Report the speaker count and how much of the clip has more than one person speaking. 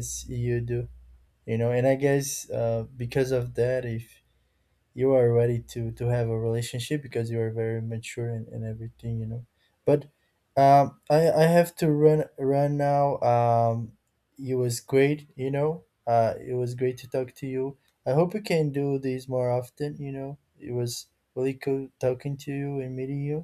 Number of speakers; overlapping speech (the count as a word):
one, no overlap